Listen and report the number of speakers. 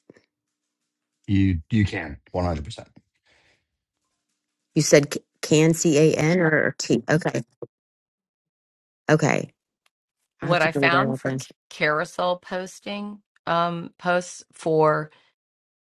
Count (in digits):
3